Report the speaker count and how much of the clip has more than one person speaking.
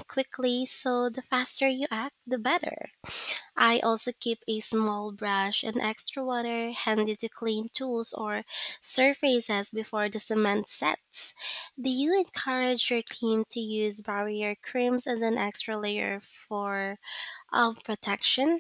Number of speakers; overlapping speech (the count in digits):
1, no overlap